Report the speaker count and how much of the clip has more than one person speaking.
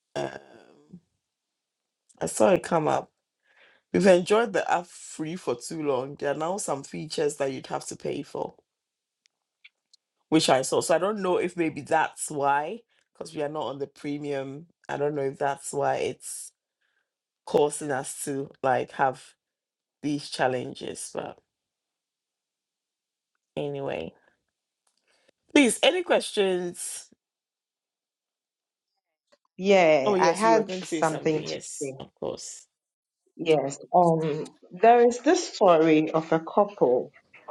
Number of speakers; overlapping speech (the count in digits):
2, about 4%